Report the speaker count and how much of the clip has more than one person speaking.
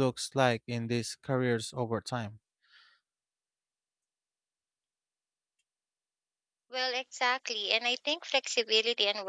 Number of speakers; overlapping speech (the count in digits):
2, no overlap